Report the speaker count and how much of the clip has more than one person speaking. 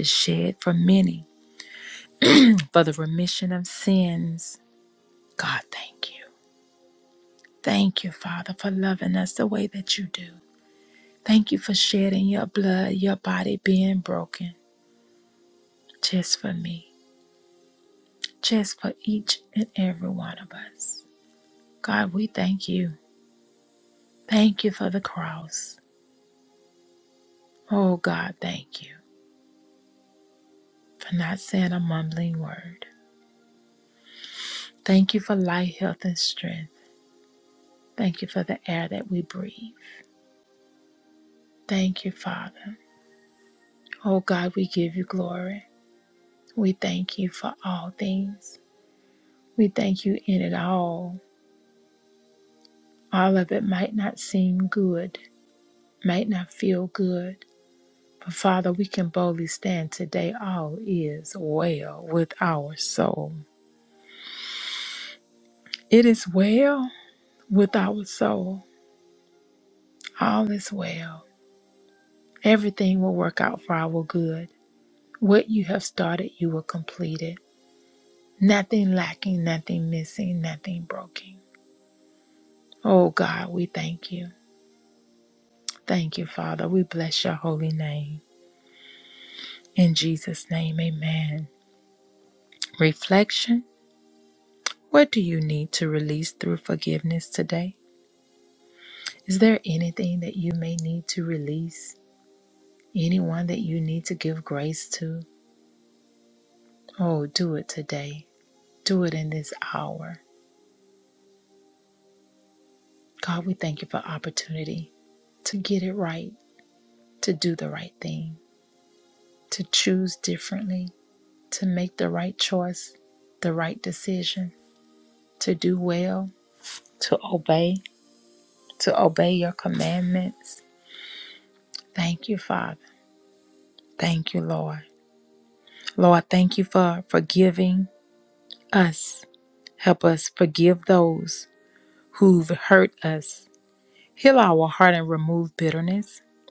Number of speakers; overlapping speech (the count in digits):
1, no overlap